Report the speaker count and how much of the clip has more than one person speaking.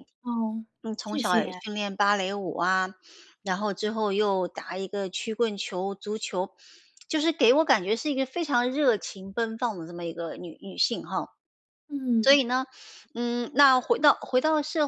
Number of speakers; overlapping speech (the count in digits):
2, about 5%